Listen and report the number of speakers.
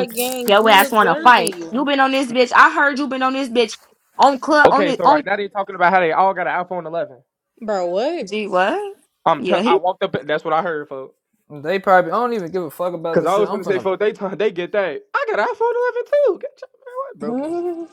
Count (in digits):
4